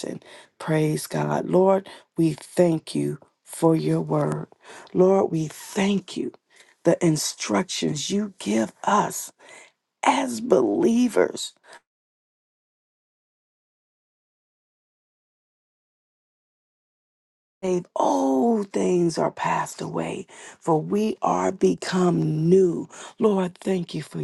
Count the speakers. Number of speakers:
1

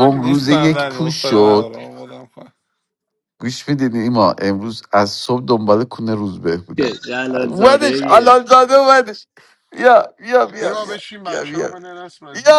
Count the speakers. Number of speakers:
4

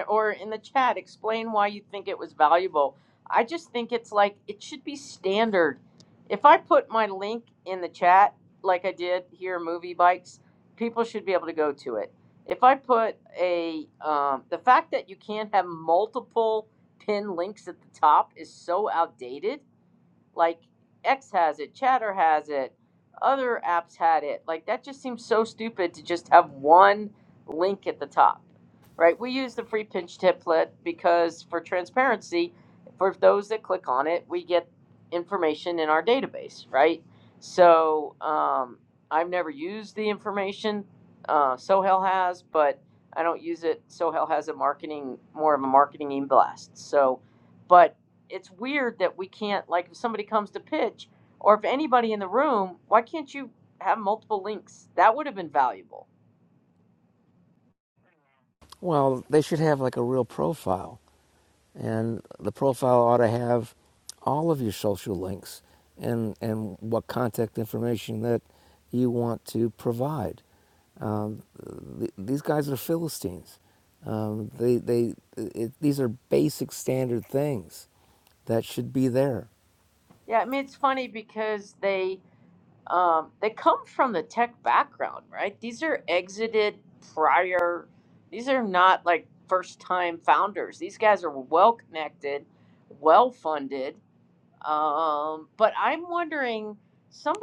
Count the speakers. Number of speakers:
2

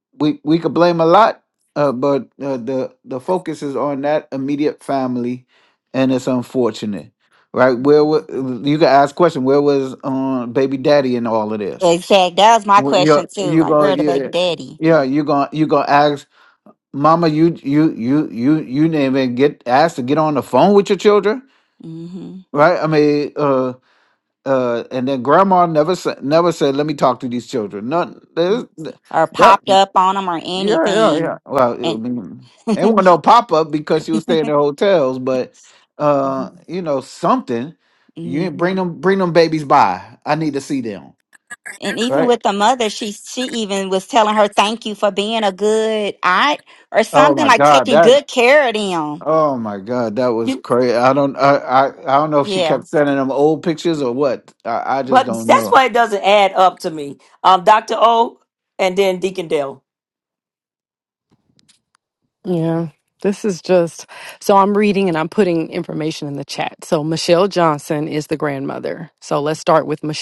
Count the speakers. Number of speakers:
4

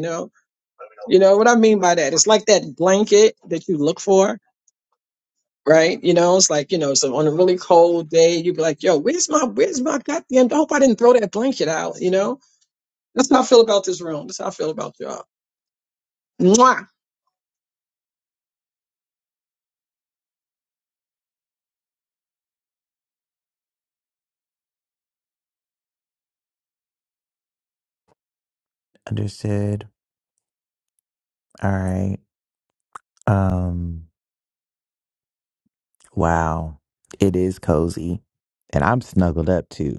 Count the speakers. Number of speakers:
2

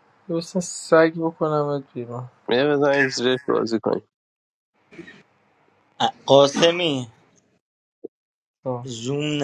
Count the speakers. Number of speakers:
3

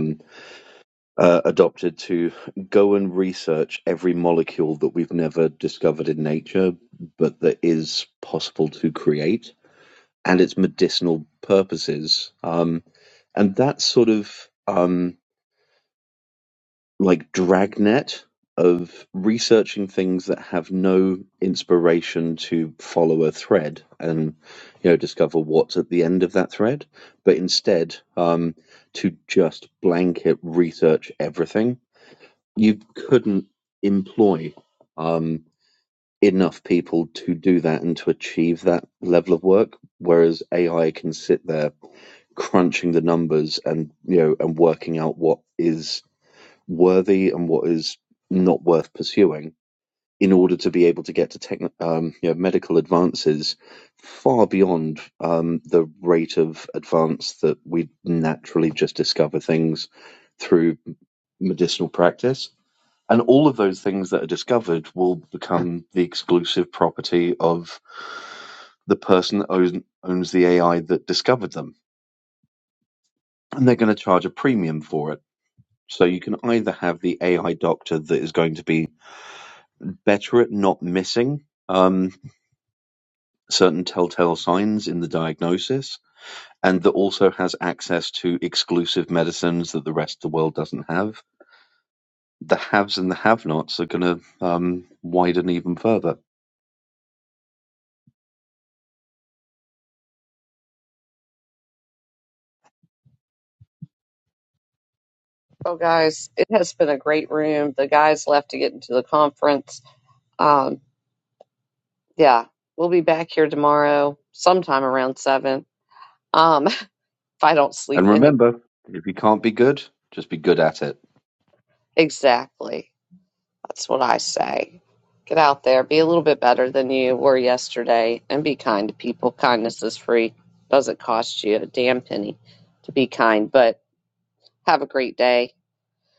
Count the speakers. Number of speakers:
2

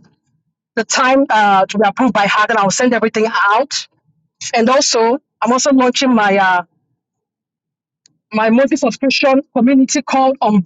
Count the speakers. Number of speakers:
1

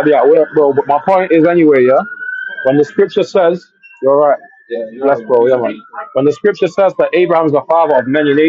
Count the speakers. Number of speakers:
1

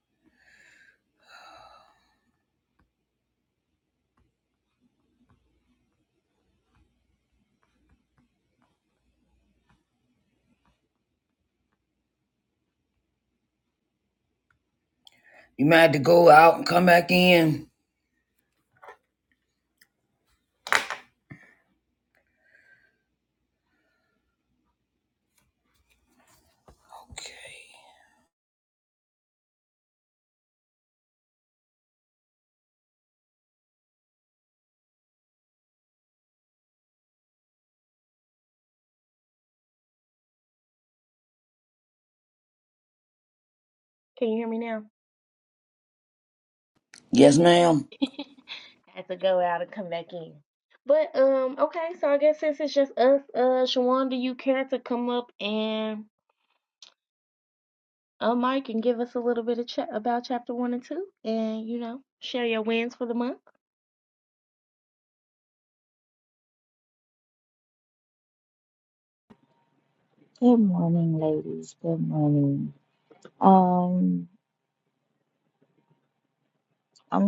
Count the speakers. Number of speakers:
3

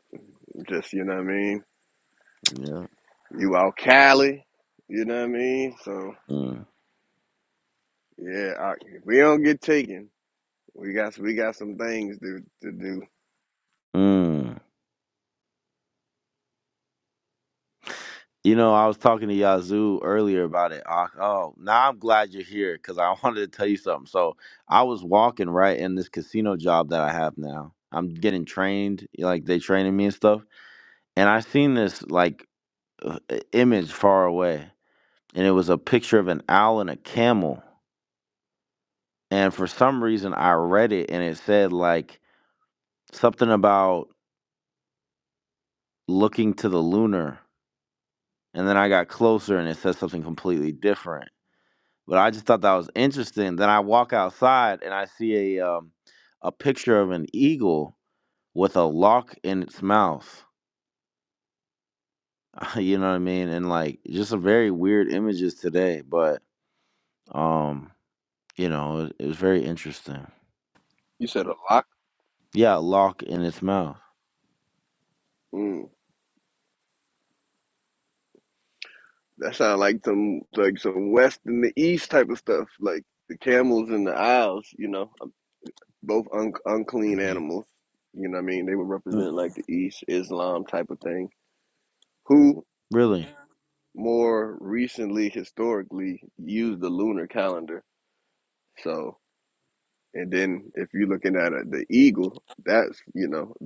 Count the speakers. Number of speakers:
2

